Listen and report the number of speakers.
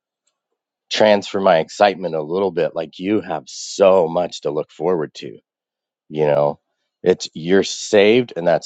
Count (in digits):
1